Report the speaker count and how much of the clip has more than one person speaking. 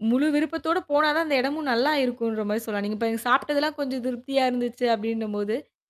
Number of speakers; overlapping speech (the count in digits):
1, no overlap